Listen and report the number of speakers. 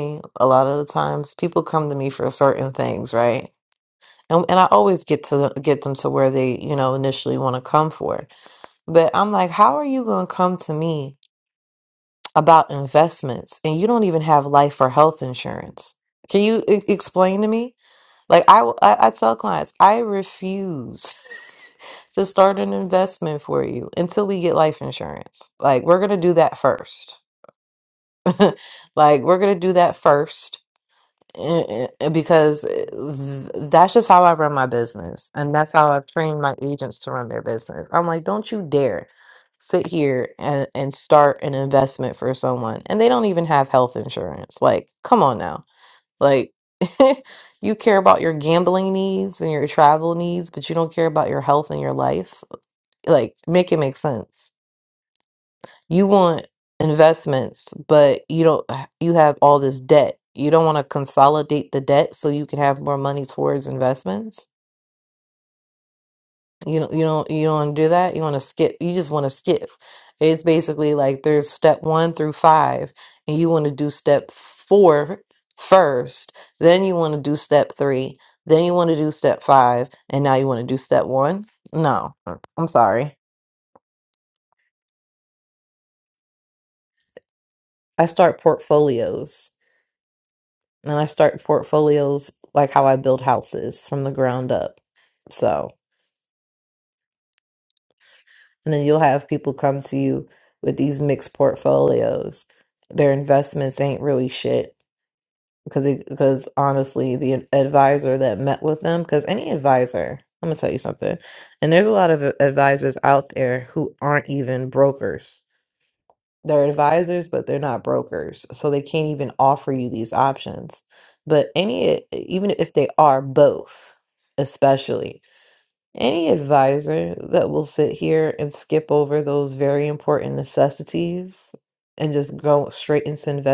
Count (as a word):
one